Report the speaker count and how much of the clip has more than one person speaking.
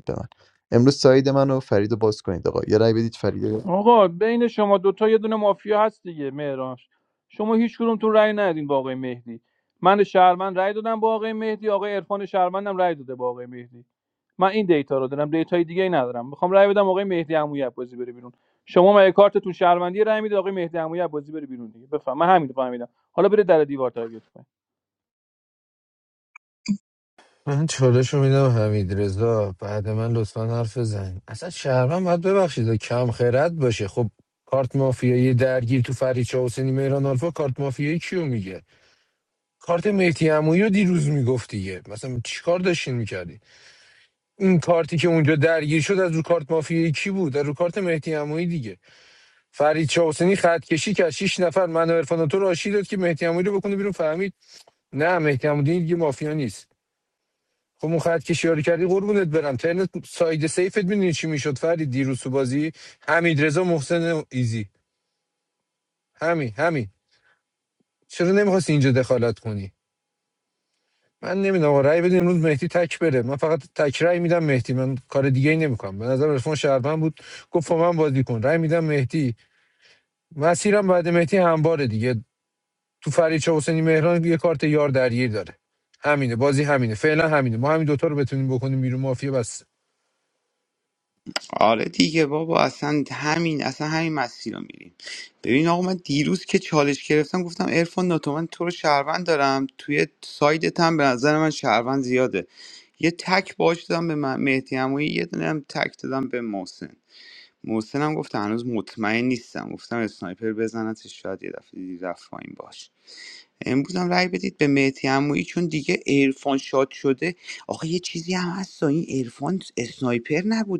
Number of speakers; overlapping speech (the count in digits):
4, under 1%